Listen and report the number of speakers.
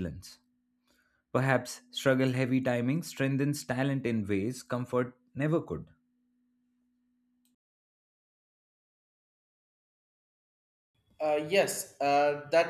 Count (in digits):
2